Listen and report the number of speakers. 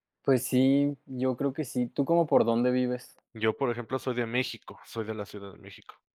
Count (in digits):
2